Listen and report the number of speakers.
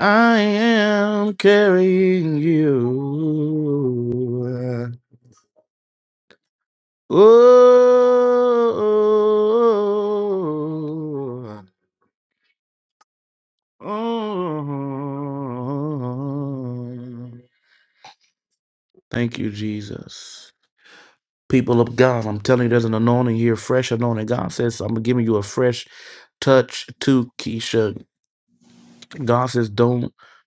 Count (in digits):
1